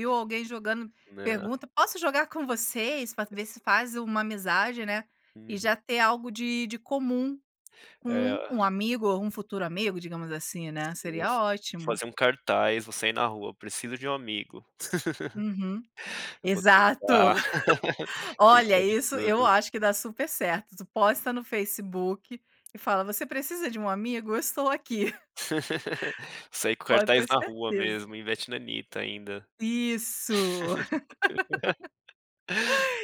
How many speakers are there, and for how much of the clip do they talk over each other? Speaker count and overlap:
2, about 12%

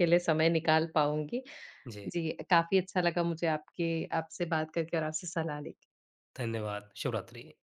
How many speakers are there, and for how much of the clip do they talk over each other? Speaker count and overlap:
2, about 1%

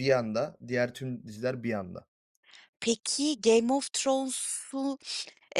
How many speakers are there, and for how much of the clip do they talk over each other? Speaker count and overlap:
2, no overlap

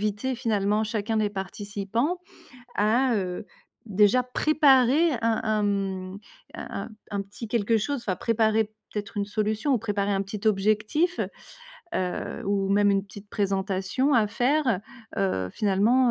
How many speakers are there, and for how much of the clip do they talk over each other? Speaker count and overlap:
1, no overlap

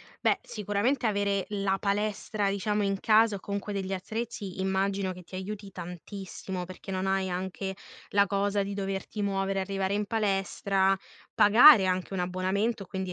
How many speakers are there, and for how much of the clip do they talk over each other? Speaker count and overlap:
1, no overlap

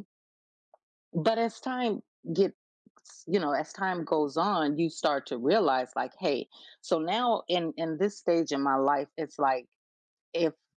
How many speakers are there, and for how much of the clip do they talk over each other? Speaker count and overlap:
1, no overlap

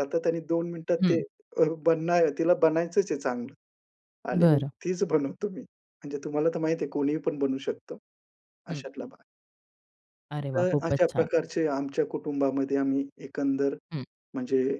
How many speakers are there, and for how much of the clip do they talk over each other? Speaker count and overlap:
2, about 10%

